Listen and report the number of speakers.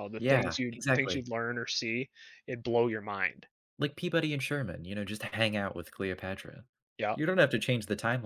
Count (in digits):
2